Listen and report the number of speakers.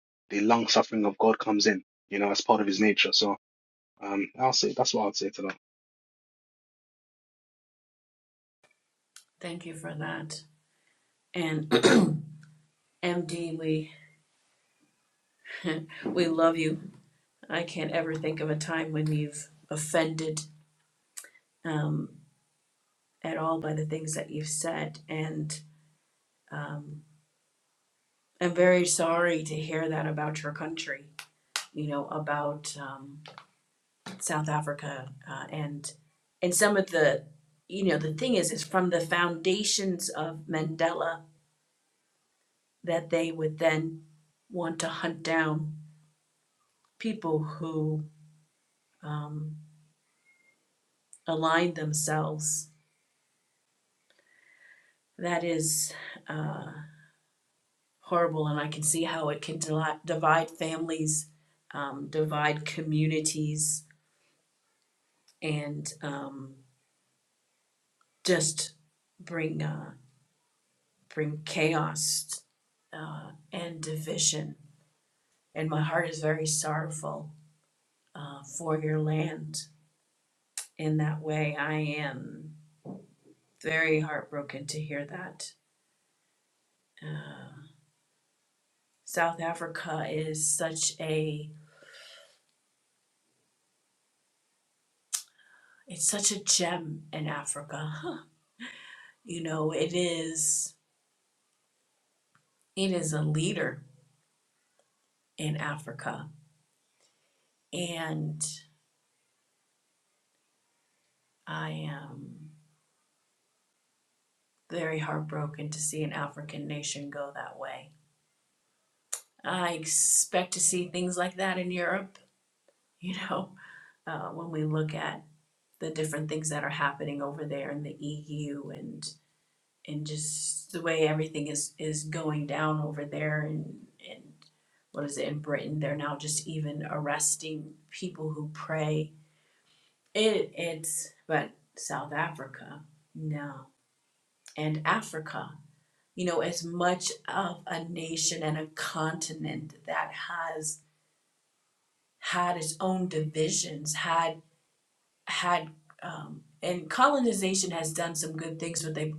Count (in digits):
2